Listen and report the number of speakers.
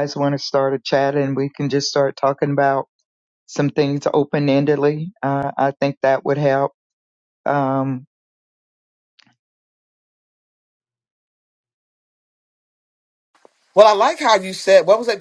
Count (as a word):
two